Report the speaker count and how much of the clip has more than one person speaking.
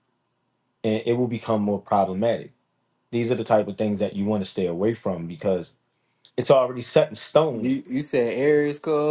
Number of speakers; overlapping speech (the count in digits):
2, about 2%